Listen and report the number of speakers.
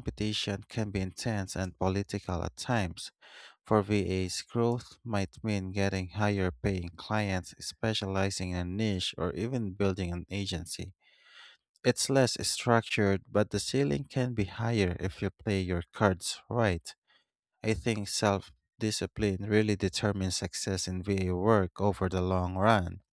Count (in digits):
1